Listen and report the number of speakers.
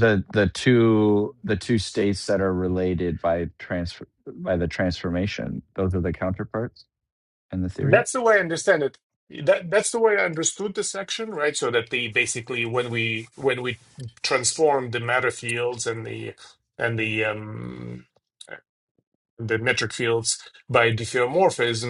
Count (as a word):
two